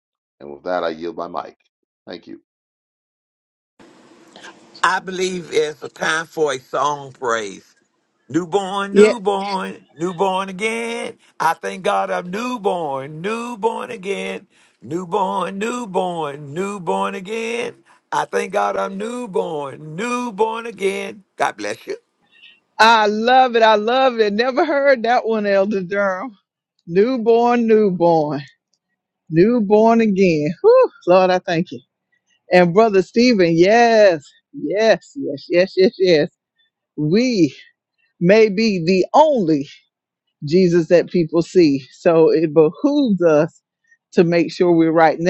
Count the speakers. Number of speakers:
3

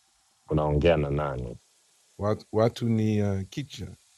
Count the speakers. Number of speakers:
2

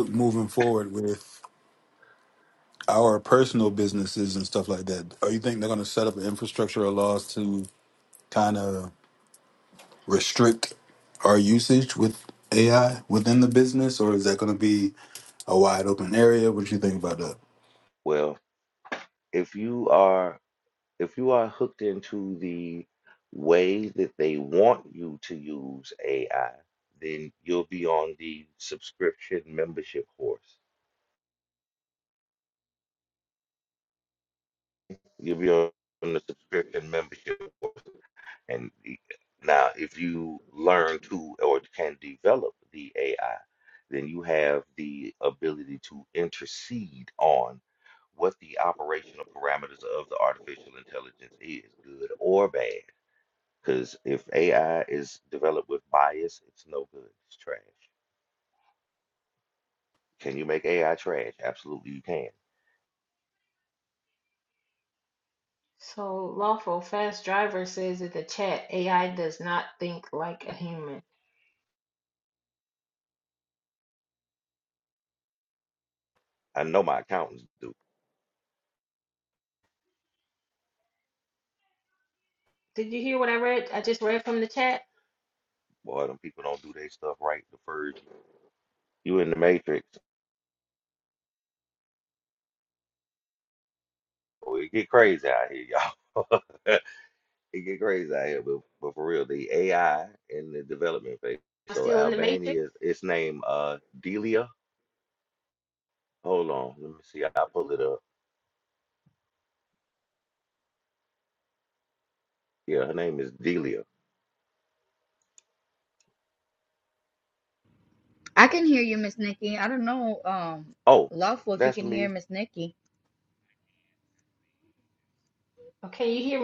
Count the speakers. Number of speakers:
4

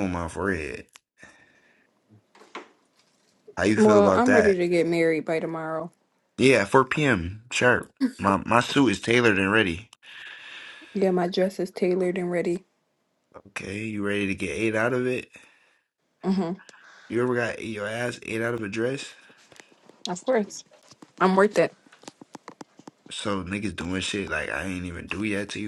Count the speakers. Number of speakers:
2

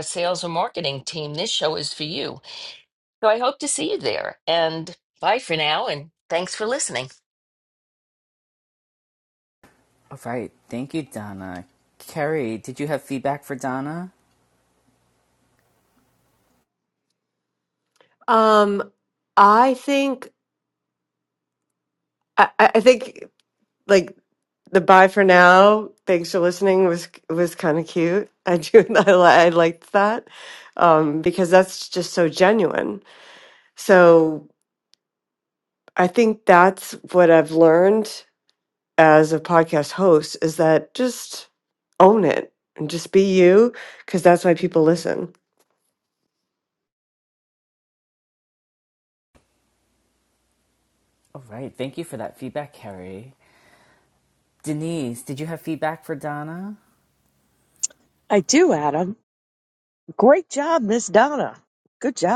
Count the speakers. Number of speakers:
4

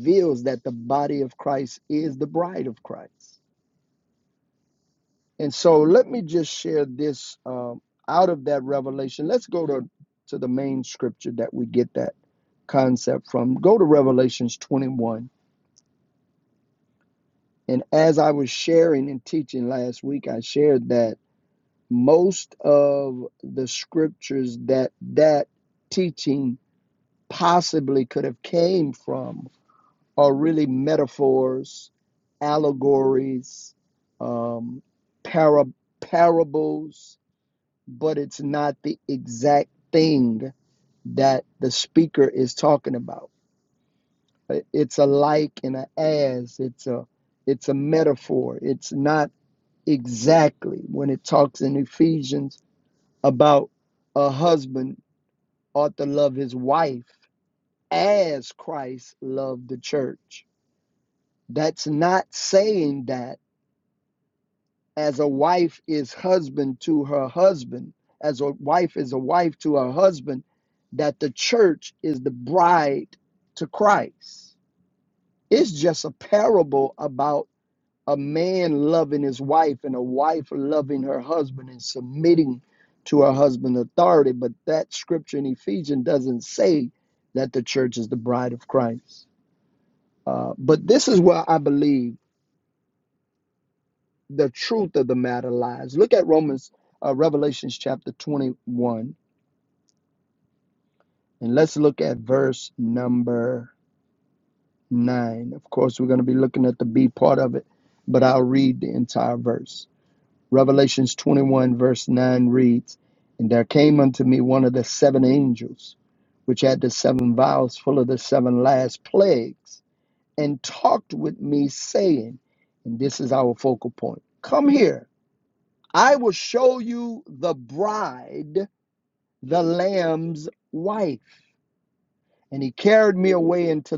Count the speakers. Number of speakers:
1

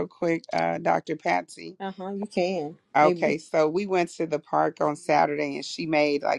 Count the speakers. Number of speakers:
2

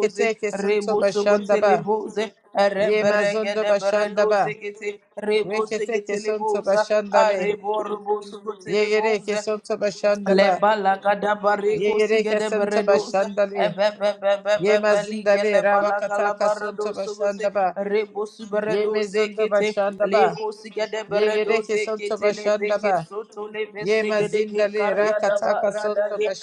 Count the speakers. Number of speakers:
2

